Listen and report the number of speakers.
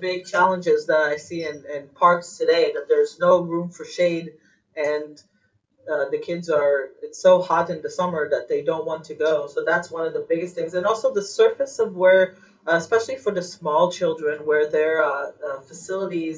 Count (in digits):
1